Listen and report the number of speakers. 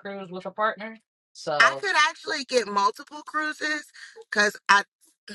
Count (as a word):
two